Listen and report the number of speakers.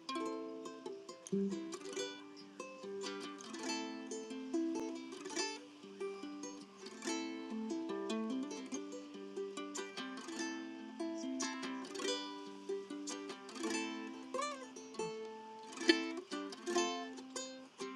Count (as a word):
zero